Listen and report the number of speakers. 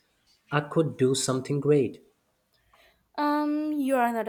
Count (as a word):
two